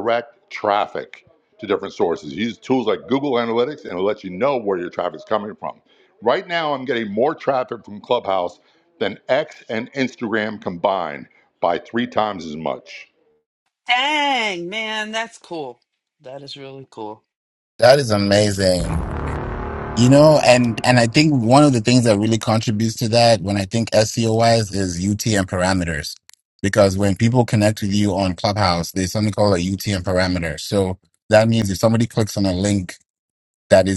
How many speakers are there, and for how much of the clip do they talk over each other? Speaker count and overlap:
3, no overlap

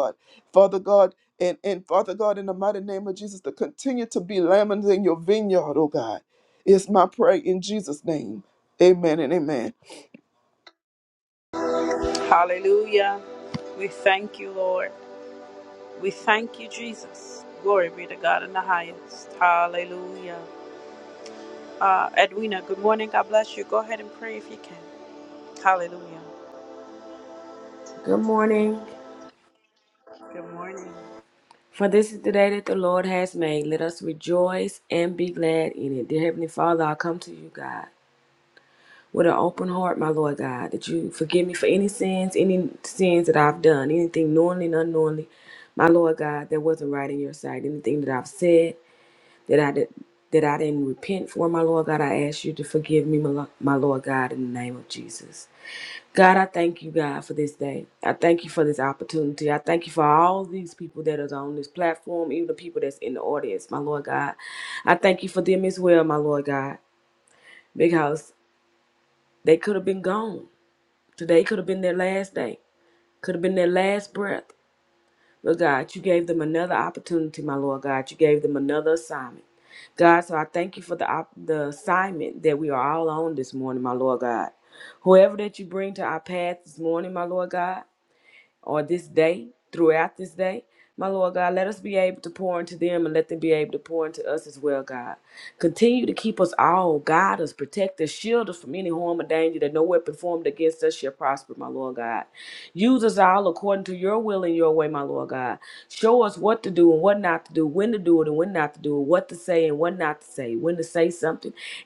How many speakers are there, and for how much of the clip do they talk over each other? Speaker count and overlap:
3, no overlap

